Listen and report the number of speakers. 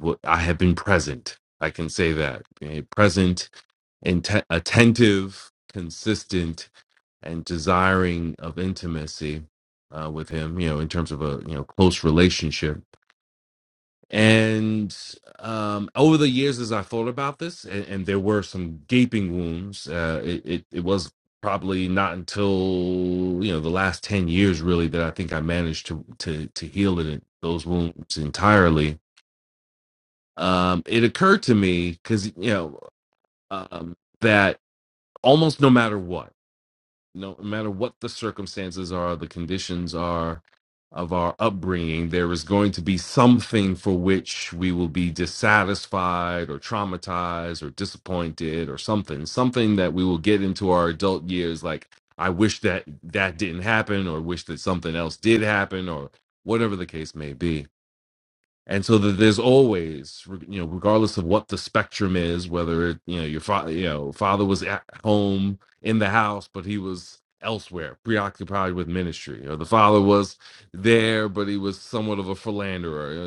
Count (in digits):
1